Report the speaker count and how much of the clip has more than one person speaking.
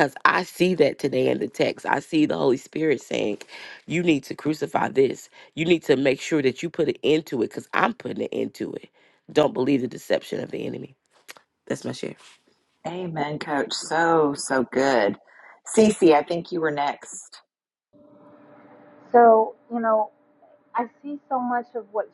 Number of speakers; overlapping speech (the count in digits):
3, no overlap